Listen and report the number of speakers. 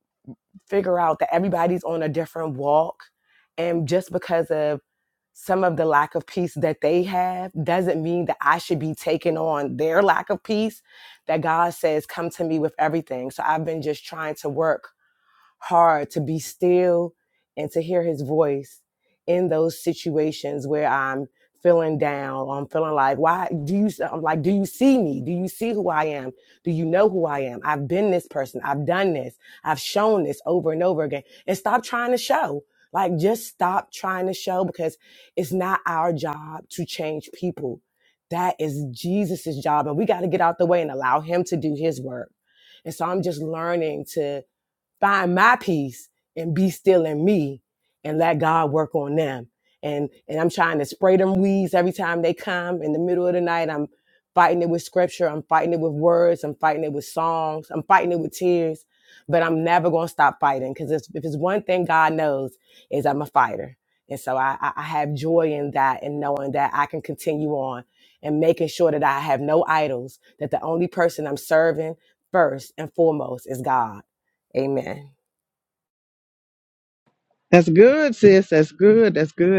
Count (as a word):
two